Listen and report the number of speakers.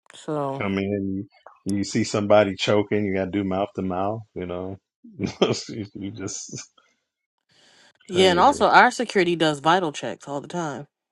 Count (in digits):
2